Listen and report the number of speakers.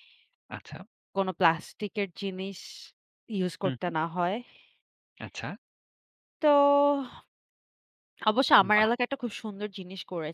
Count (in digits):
2